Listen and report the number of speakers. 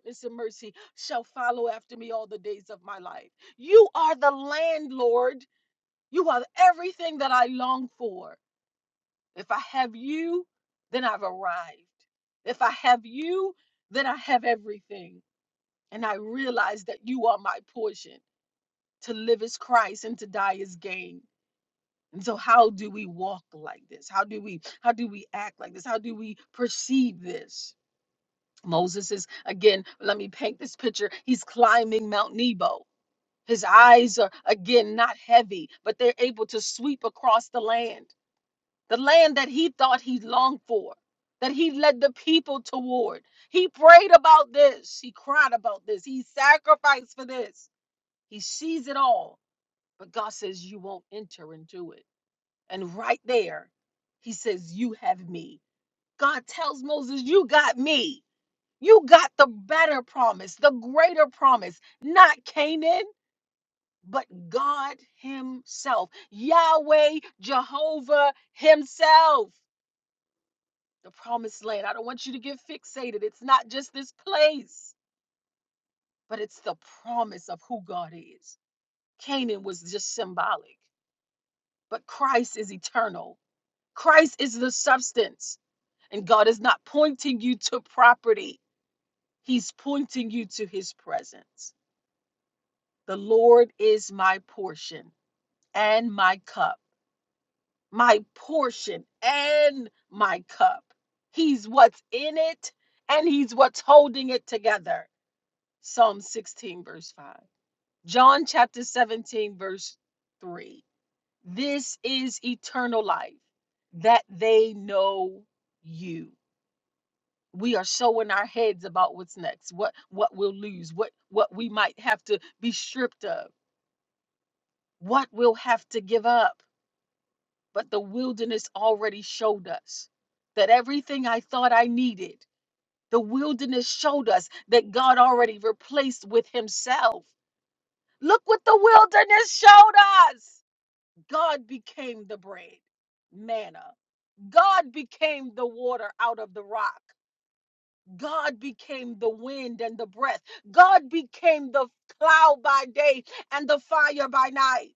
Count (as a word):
one